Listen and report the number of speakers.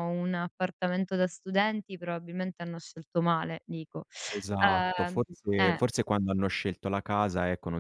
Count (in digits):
2